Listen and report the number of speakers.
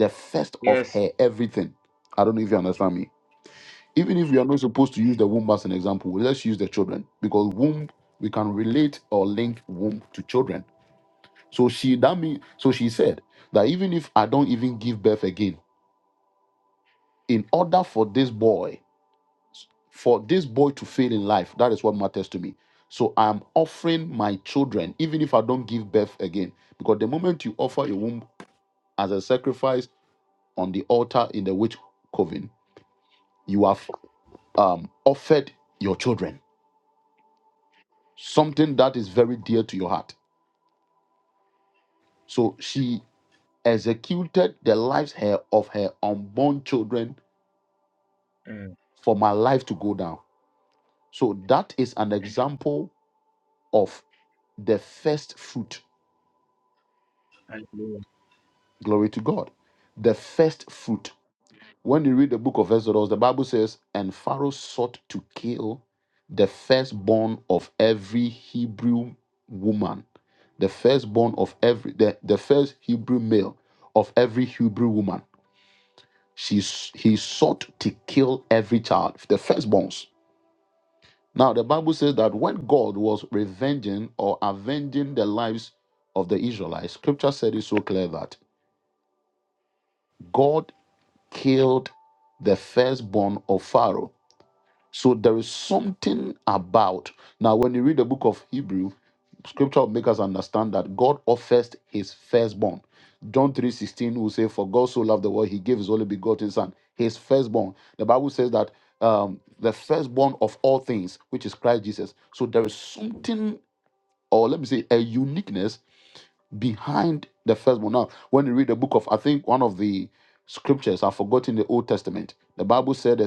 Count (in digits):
2